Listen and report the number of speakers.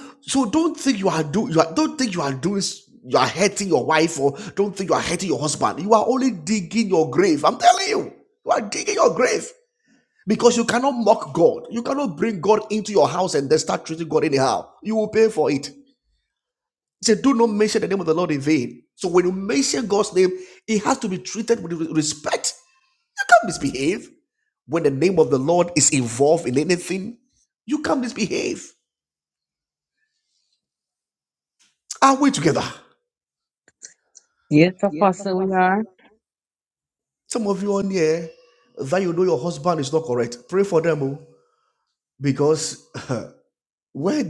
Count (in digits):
2